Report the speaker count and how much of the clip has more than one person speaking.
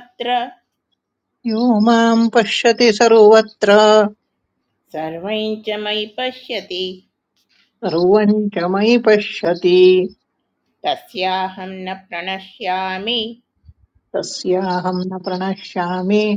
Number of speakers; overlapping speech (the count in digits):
2, no overlap